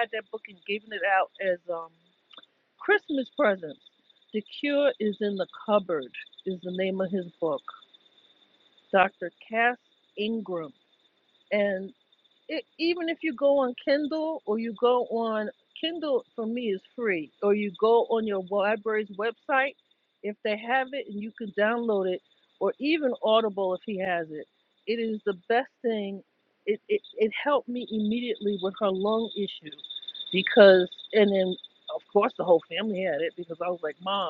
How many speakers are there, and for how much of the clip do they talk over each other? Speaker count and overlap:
one, no overlap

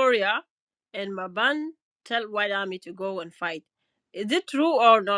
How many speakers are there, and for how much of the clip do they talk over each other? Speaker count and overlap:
one, no overlap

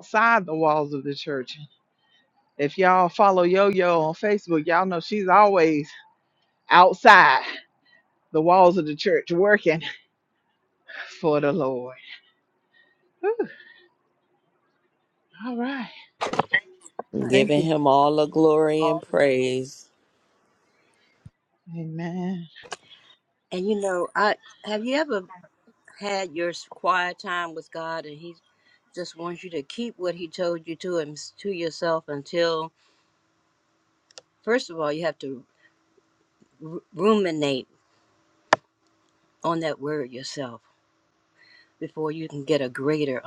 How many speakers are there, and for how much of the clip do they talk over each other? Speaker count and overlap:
three, about 1%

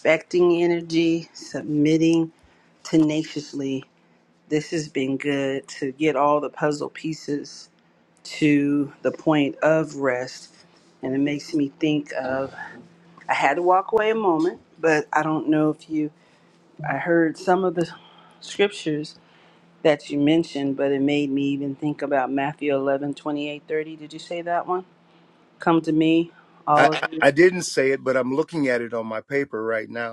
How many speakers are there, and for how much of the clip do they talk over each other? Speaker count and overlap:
two, about 2%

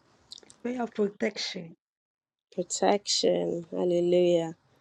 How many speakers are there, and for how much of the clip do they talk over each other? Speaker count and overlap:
two, no overlap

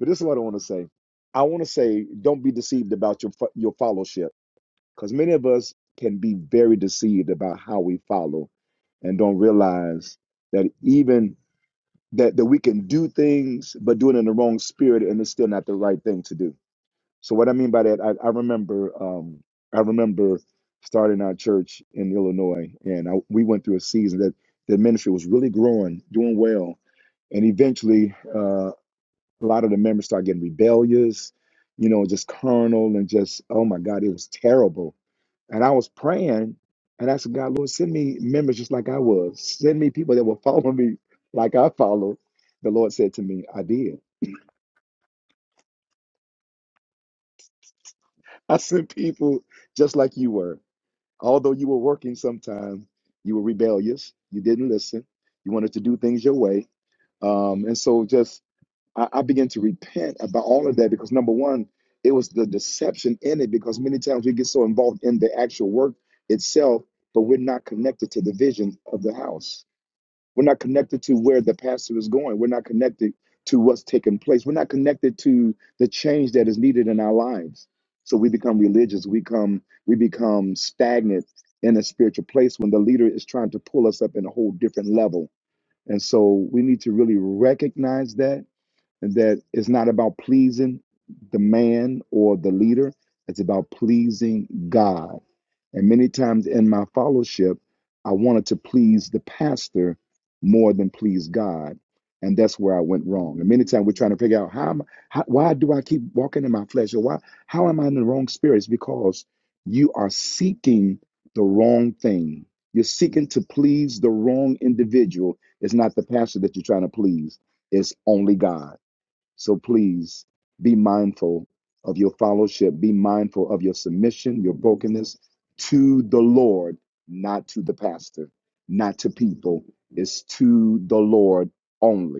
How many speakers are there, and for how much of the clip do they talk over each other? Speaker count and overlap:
one, no overlap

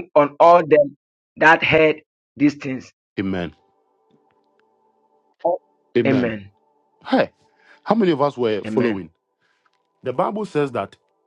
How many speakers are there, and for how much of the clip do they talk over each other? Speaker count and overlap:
two, about 6%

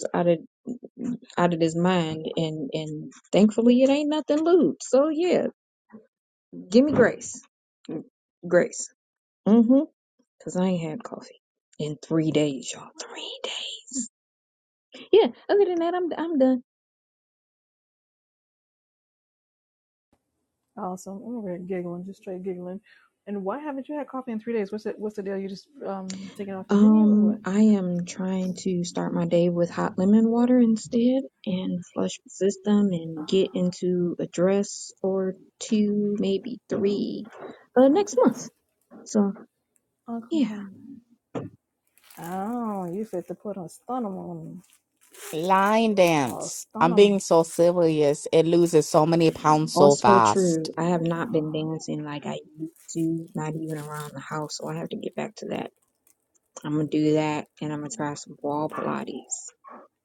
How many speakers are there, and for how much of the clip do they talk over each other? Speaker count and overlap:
three, about 5%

